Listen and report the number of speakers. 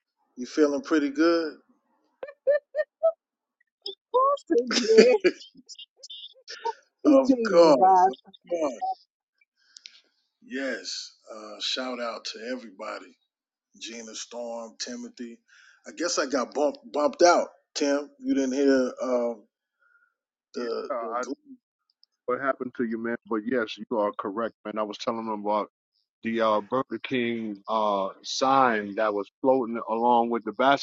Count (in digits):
3